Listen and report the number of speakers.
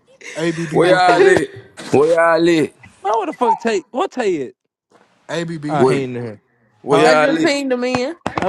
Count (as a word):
four